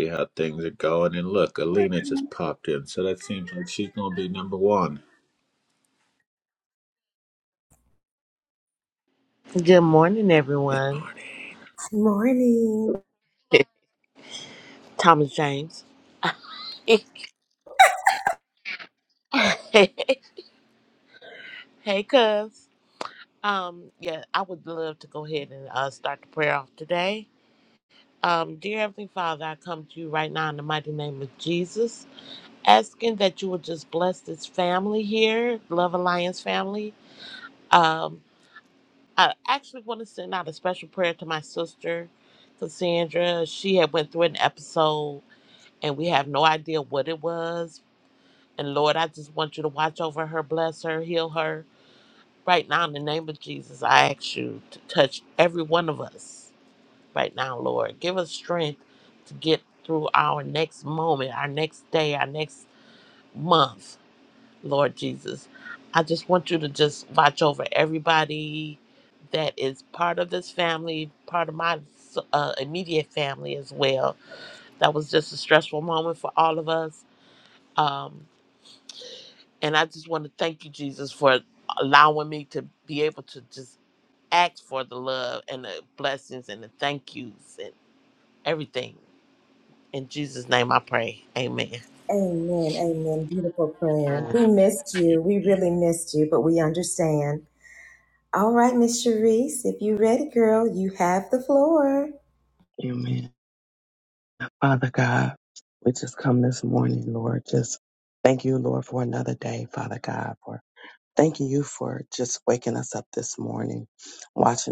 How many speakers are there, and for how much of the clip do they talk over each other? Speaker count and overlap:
4, about 1%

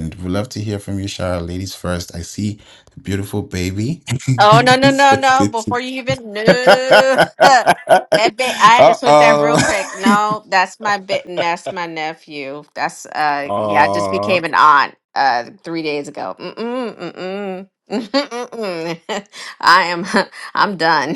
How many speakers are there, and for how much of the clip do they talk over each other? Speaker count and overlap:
2, about 12%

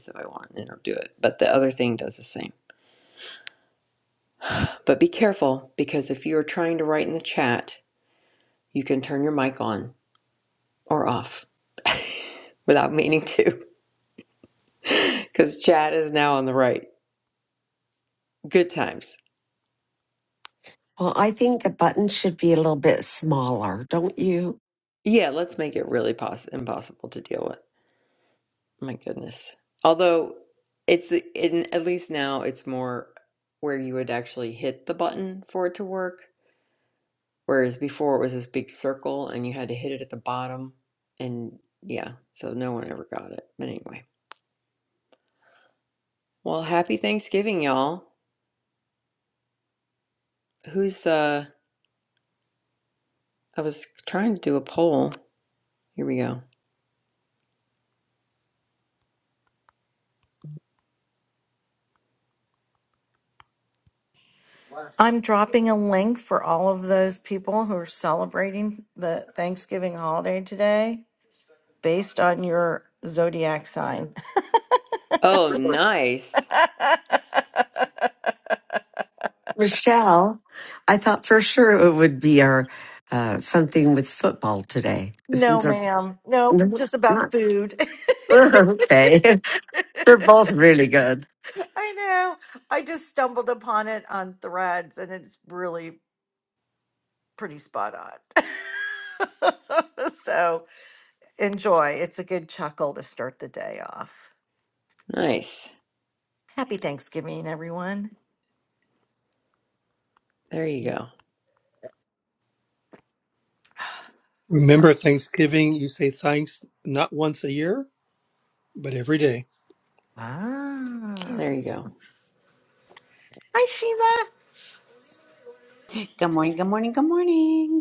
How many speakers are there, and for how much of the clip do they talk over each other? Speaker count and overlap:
5, about 1%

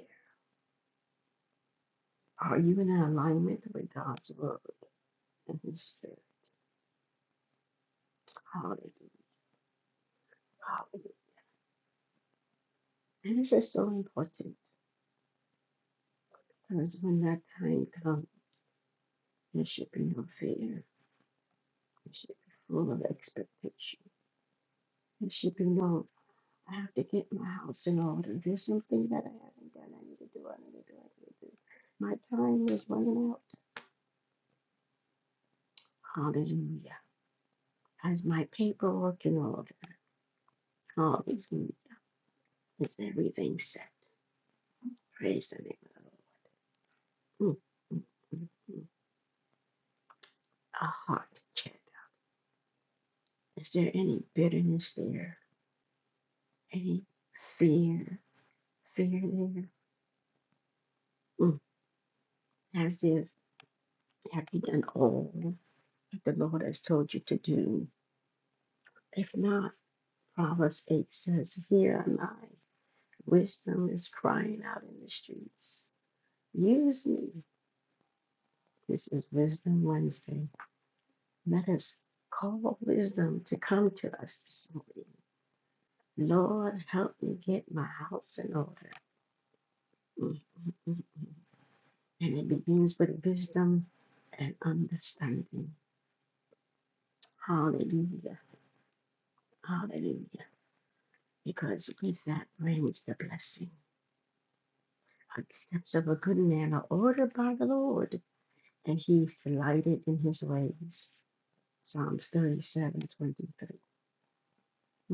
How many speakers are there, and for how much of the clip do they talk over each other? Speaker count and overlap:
1, no overlap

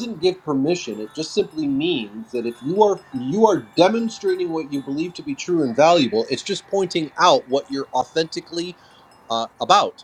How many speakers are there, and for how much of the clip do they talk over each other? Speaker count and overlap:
1, no overlap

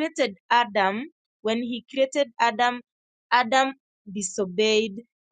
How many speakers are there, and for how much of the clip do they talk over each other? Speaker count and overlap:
1, no overlap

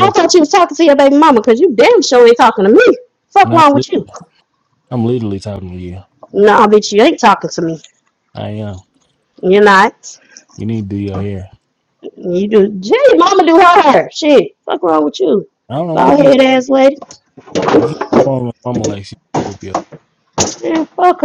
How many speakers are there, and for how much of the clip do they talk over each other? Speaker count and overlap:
2, about 5%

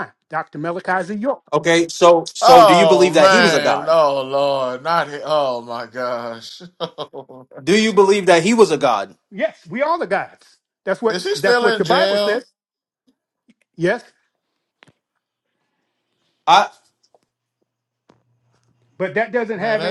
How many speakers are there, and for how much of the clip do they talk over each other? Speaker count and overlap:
3, about 15%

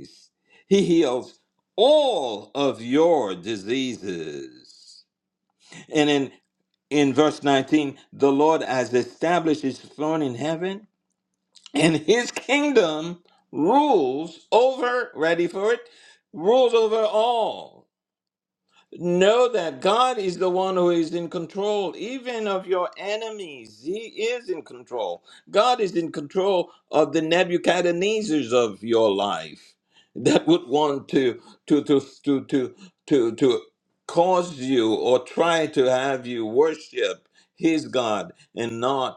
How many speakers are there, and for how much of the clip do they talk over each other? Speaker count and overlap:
1, no overlap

